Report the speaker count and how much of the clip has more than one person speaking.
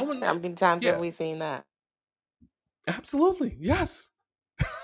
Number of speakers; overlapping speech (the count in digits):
2, about 7%